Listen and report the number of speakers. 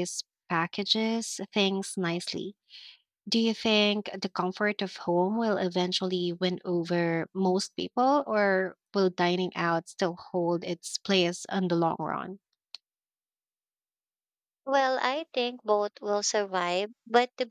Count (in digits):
2